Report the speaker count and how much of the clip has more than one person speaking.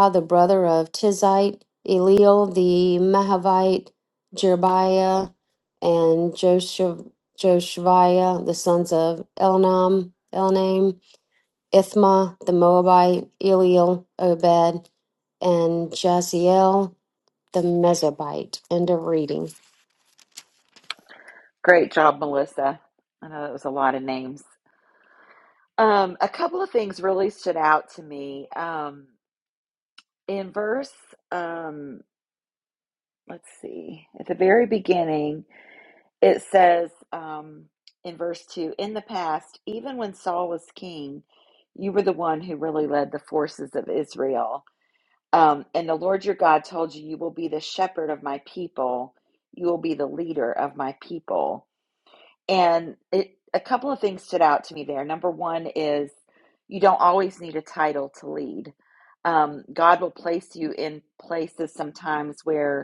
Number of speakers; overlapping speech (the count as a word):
two, no overlap